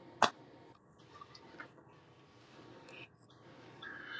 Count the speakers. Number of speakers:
zero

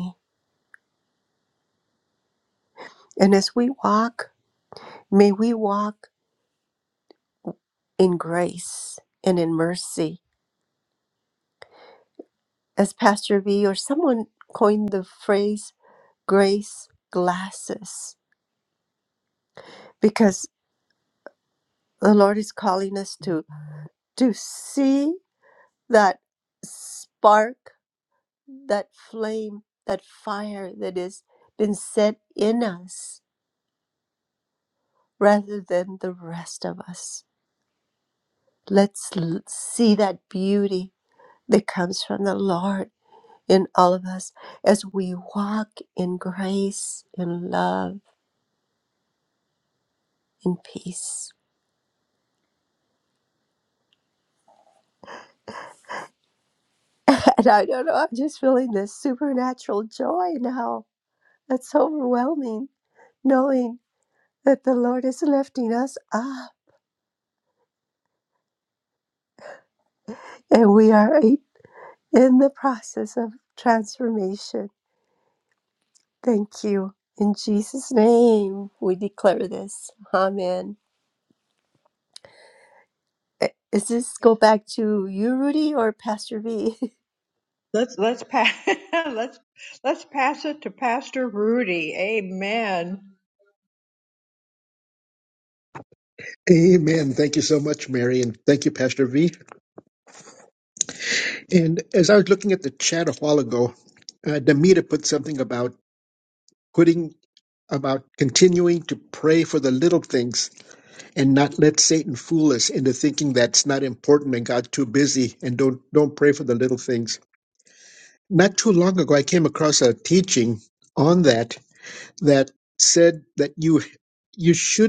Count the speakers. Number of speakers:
three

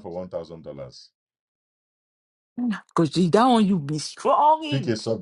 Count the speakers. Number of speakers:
two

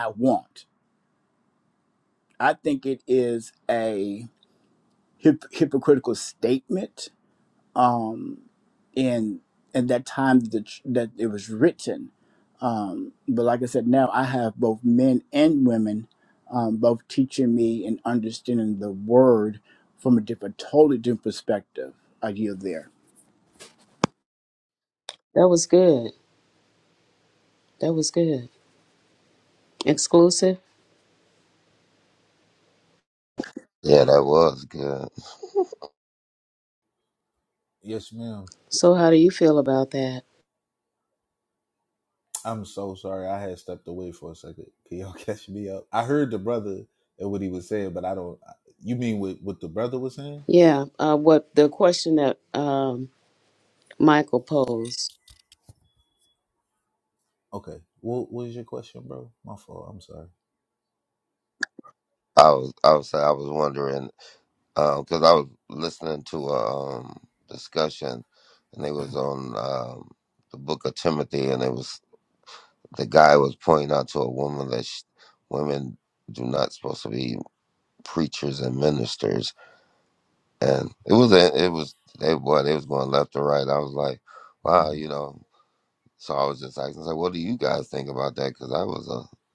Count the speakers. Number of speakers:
four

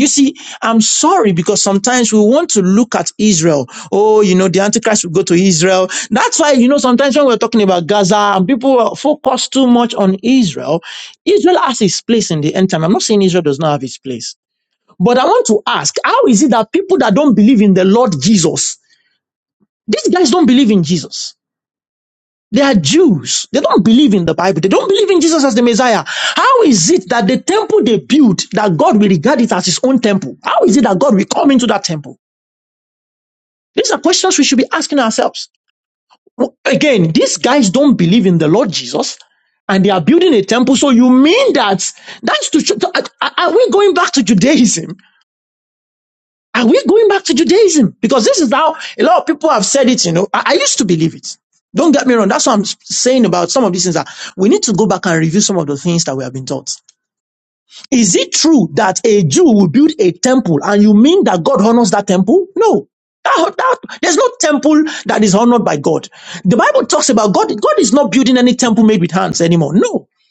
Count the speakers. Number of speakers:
one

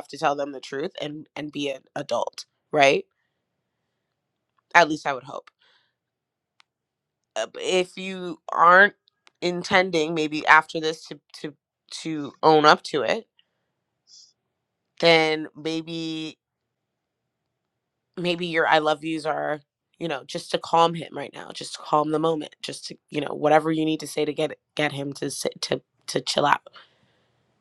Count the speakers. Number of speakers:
one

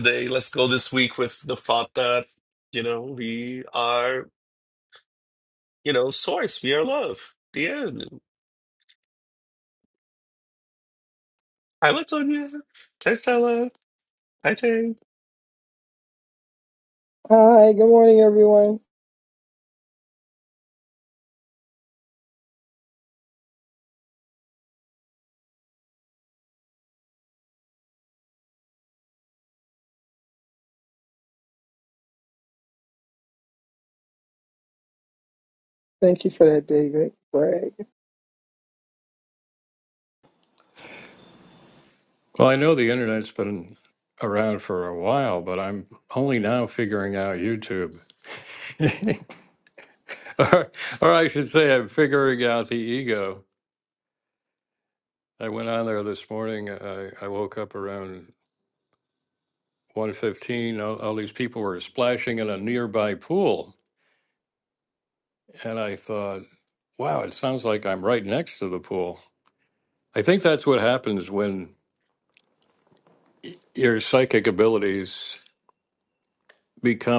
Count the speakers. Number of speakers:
three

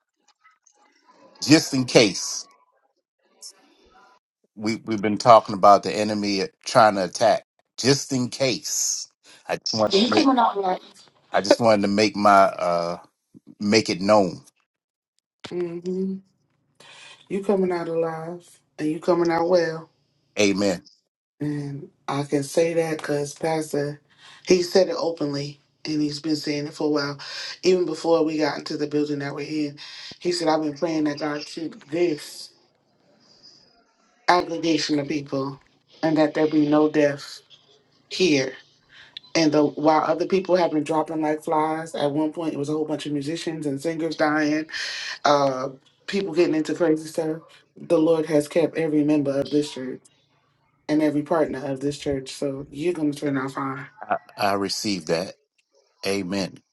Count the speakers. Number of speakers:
two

